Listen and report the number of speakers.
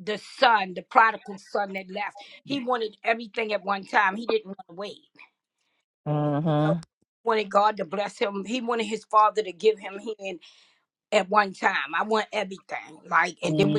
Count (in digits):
2